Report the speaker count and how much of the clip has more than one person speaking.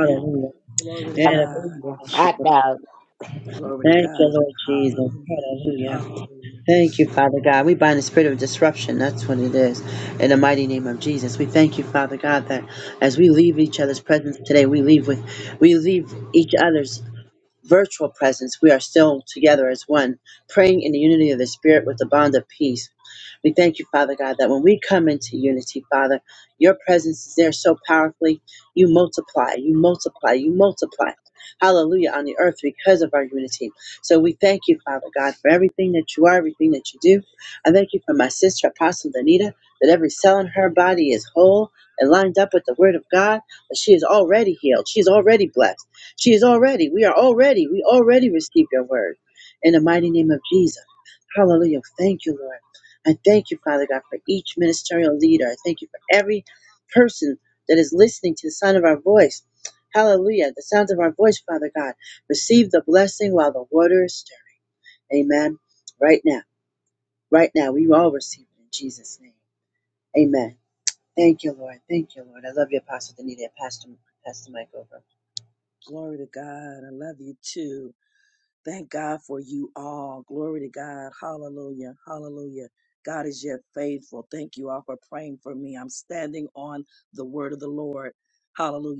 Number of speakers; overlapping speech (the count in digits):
3, about 3%